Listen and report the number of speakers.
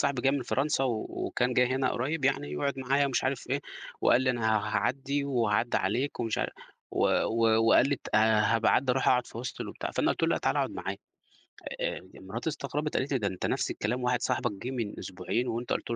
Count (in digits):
1